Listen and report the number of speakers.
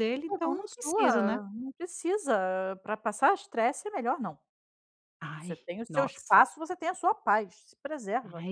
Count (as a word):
two